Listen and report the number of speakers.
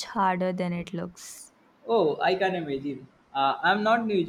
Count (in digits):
2